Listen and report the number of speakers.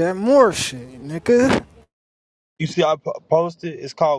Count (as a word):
two